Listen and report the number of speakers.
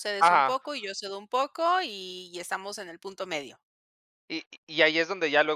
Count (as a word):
two